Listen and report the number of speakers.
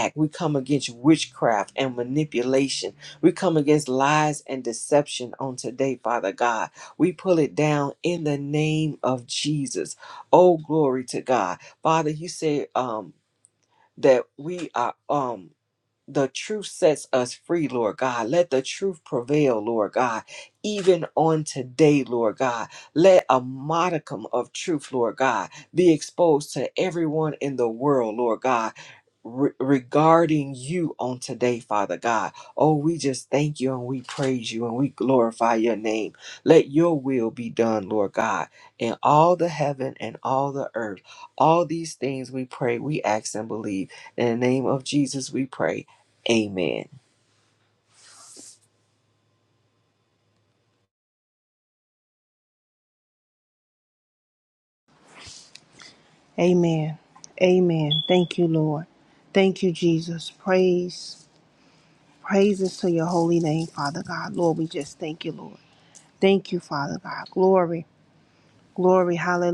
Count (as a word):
two